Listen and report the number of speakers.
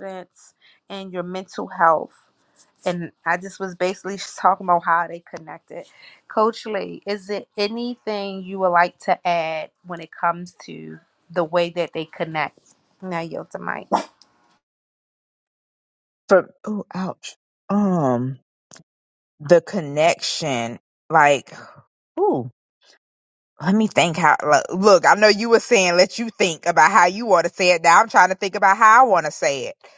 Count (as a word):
two